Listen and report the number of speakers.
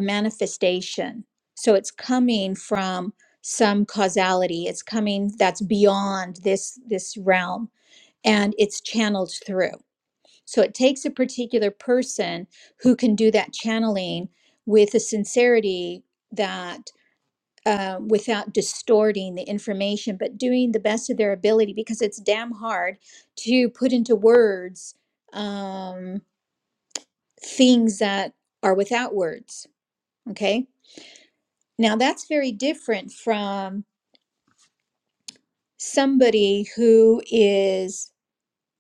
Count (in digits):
1